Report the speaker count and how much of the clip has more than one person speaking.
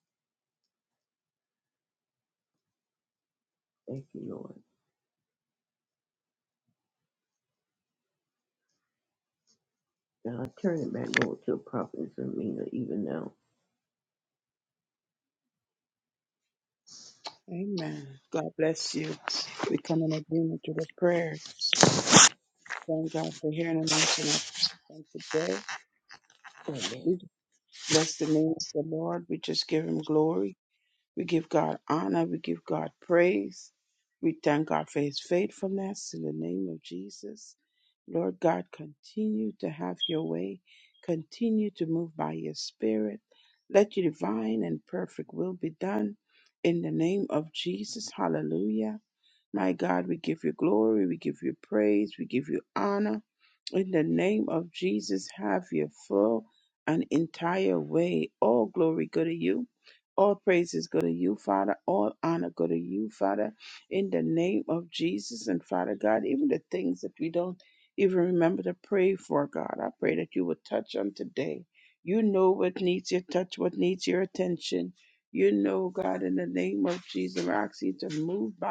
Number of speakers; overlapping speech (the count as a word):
two, under 1%